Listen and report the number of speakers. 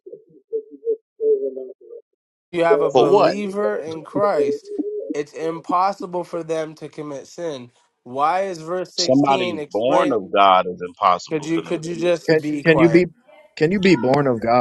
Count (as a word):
three